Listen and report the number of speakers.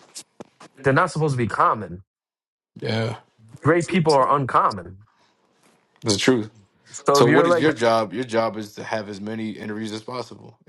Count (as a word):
two